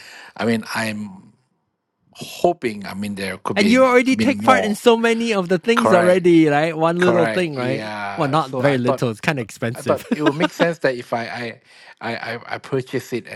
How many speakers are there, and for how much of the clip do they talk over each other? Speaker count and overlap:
2, about 30%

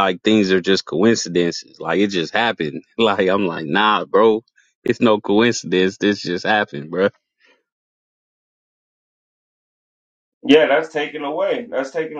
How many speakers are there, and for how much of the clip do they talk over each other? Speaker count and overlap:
2, no overlap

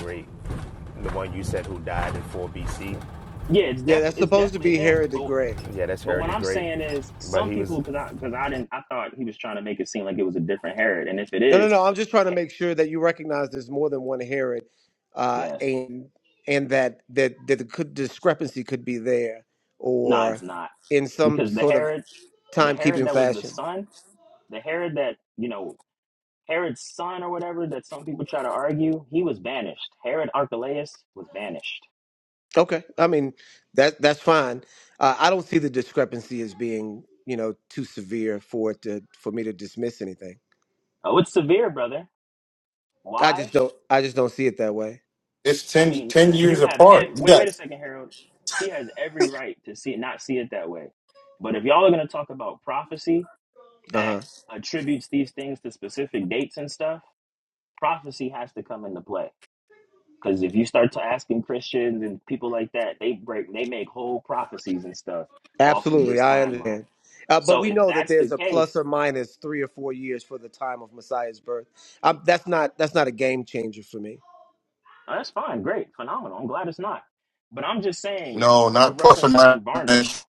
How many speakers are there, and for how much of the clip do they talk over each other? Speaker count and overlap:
4, about 14%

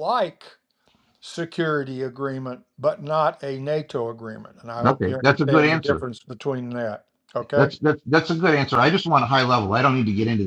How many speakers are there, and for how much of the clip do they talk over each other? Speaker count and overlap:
2, about 13%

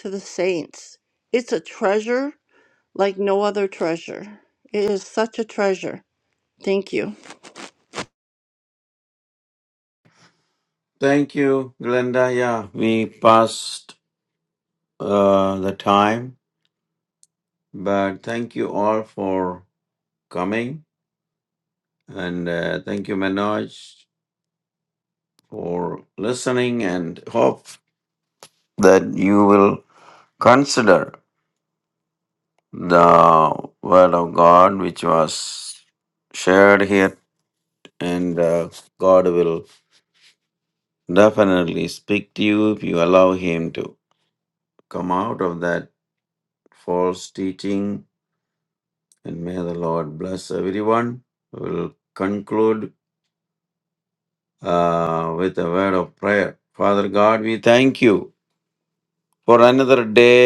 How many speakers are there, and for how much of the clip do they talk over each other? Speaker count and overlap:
2, no overlap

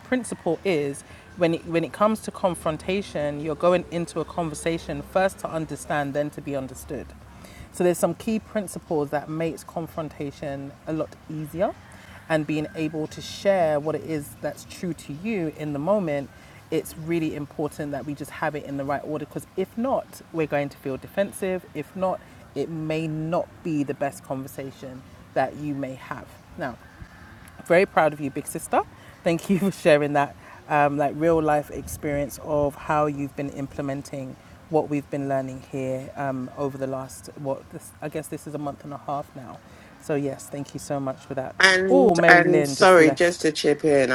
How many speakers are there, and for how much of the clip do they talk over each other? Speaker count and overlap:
2, about 4%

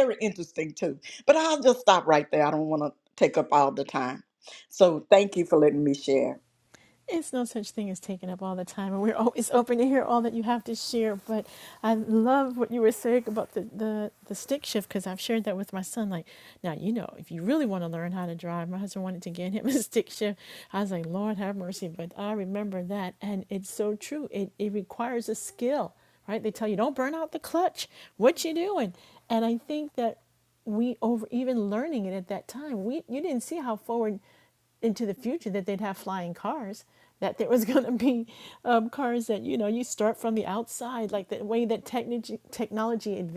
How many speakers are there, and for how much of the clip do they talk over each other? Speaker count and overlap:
2, no overlap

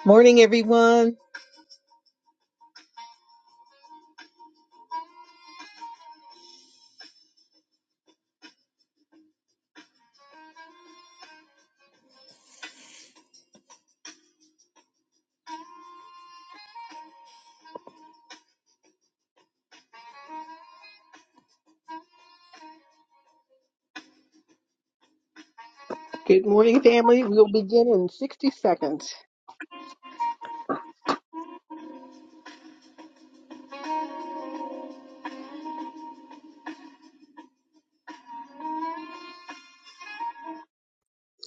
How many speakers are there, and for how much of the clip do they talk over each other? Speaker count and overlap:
2, no overlap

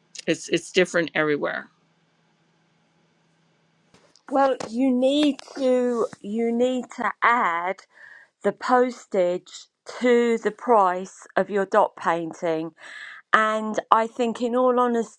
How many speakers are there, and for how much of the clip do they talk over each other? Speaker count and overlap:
2, no overlap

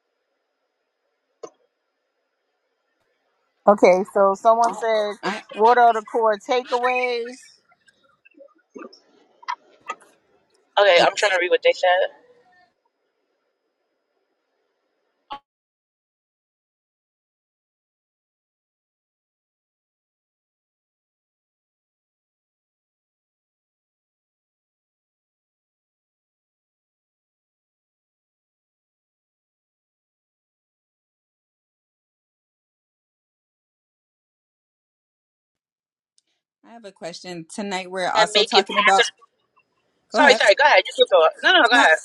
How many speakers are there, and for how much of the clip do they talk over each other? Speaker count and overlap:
3, about 2%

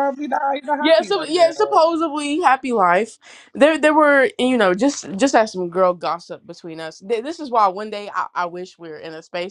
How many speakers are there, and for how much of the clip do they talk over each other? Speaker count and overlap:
2, about 11%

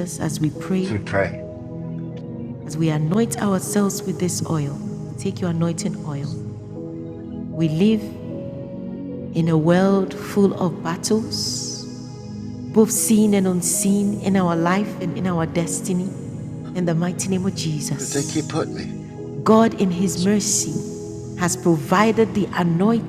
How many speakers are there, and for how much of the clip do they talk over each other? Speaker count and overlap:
2, under 1%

